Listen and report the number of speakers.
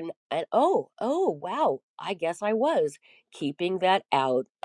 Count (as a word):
one